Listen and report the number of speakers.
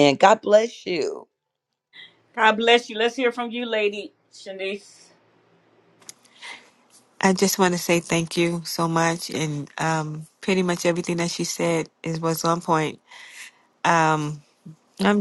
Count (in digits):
3